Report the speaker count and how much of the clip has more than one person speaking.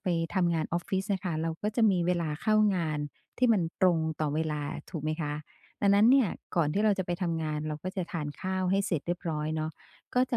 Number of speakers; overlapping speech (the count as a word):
one, no overlap